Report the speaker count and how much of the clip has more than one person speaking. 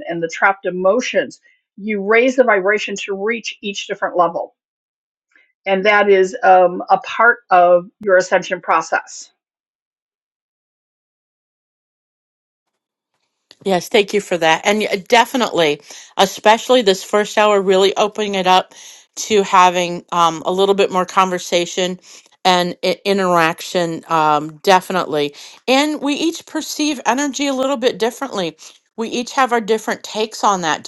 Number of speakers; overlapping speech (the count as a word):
two, no overlap